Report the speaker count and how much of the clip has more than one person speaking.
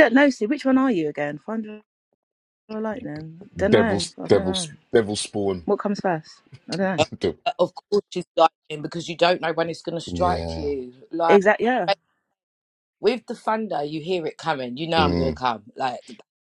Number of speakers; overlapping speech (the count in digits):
3, about 13%